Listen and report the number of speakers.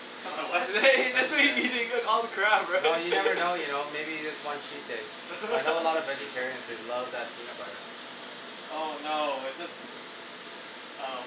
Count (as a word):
three